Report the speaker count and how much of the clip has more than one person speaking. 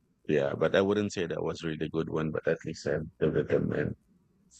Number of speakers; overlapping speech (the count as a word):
one, no overlap